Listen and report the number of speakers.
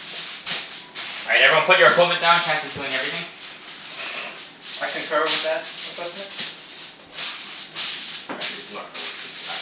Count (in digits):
3